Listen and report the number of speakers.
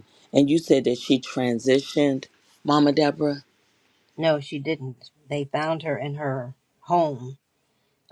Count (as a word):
two